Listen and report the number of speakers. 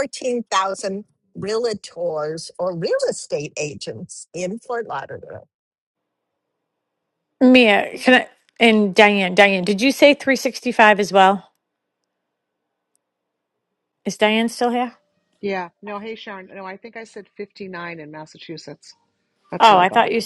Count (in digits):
3